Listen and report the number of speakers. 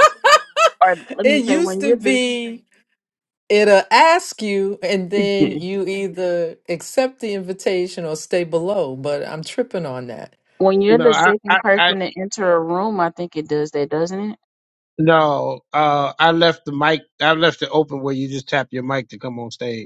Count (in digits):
3